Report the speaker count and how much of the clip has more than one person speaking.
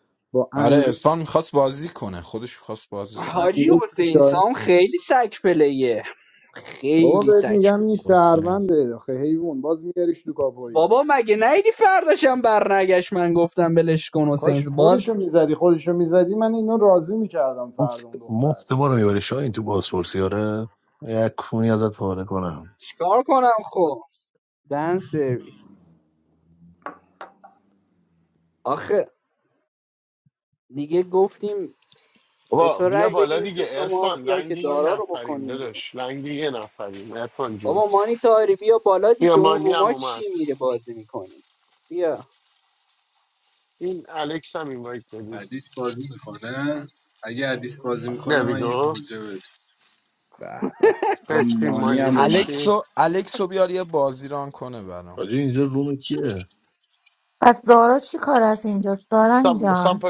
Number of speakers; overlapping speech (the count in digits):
7, about 19%